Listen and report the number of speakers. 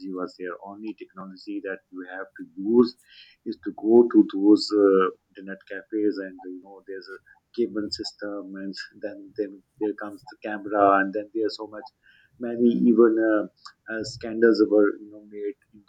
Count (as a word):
one